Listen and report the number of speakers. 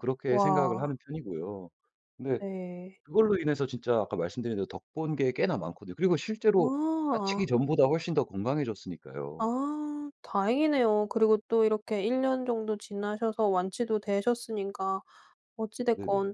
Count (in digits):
2